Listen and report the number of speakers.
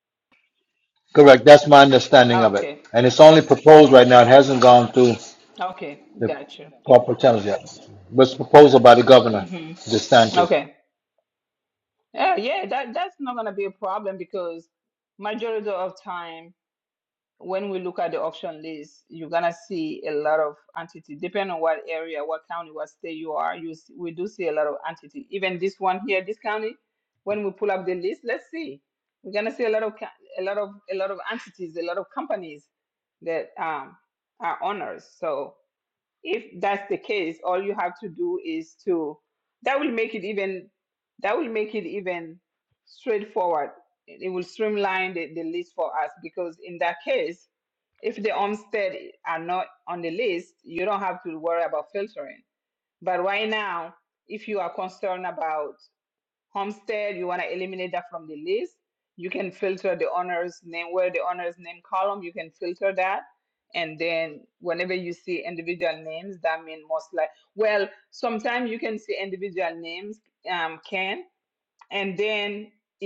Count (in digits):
2